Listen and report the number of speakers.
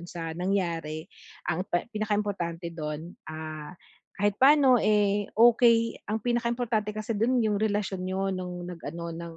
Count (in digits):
1